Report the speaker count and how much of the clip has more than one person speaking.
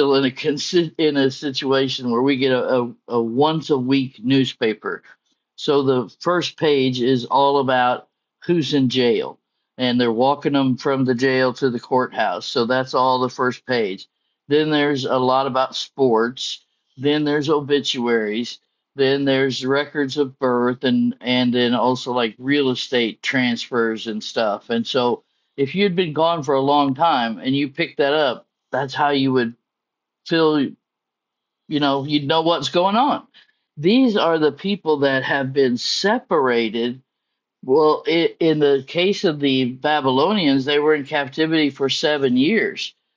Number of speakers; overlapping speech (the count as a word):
one, no overlap